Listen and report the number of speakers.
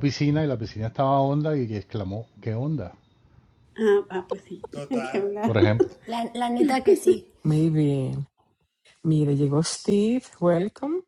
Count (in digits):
4